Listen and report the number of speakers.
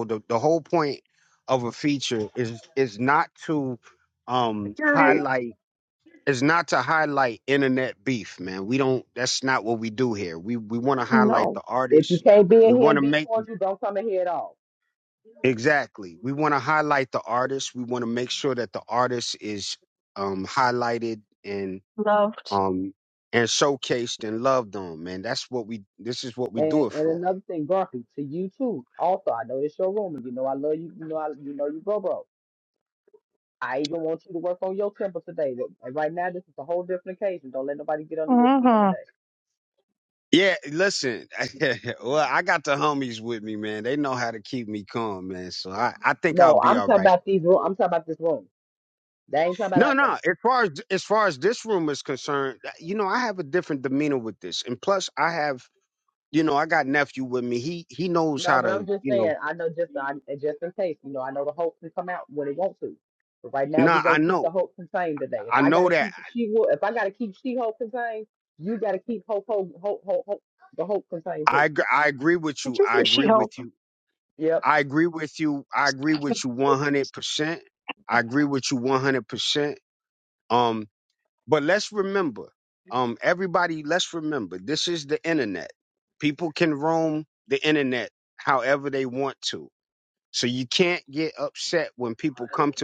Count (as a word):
three